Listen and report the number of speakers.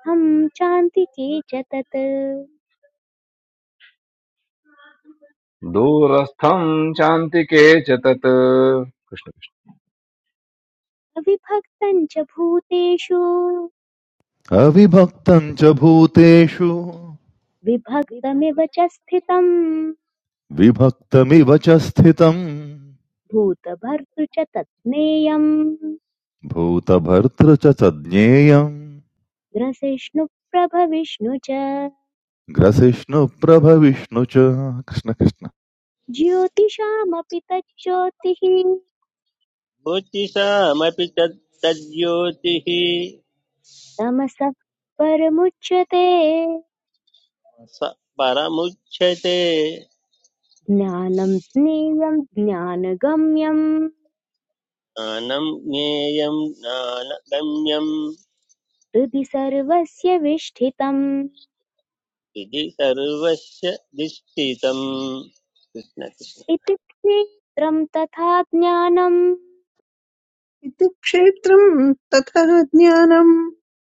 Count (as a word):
five